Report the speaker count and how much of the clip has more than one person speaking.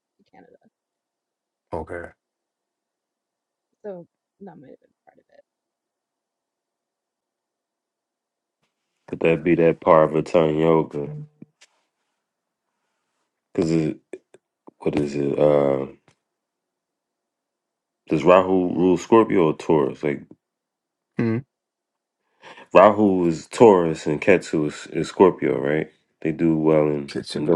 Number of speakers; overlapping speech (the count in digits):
3, about 2%